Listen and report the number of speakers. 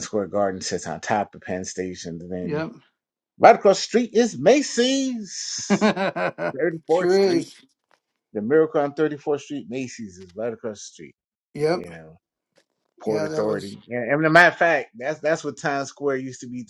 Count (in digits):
2